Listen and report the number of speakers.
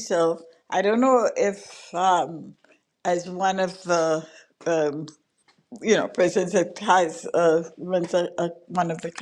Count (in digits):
1